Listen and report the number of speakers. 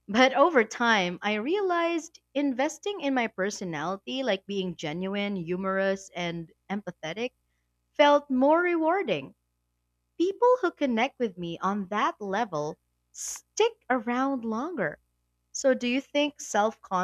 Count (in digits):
1